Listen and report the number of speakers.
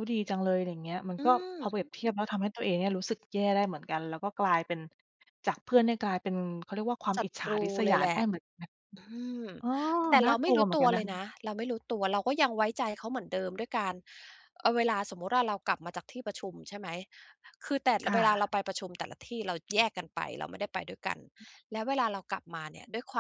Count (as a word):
two